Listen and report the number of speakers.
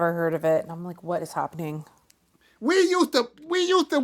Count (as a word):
two